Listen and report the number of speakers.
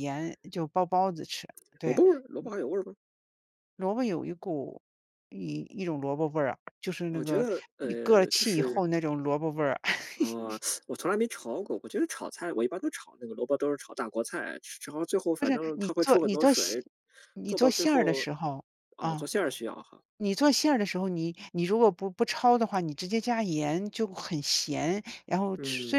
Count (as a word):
two